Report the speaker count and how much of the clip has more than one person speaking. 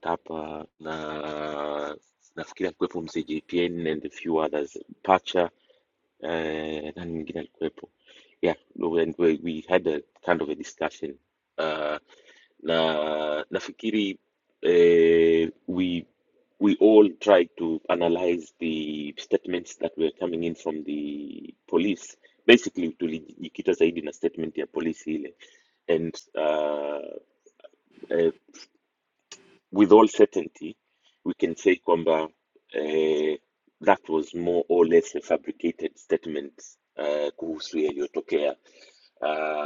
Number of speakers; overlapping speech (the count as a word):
one, no overlap